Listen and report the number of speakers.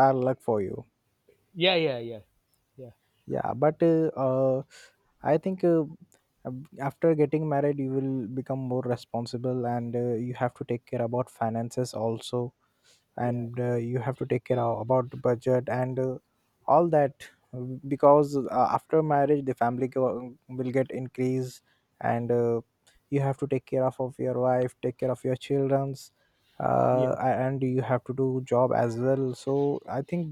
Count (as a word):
two